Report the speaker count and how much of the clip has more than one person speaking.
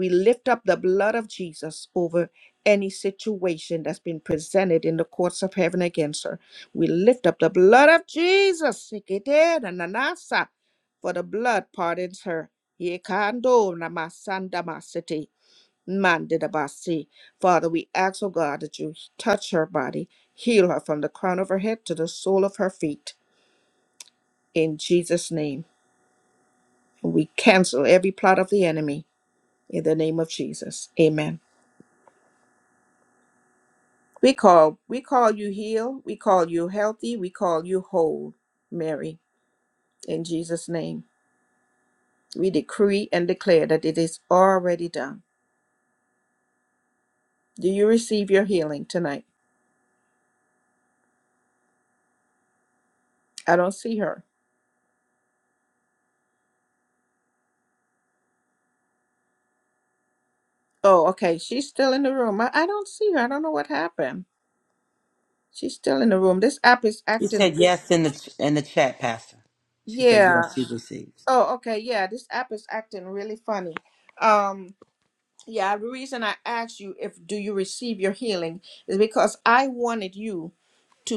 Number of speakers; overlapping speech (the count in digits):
2, about 1%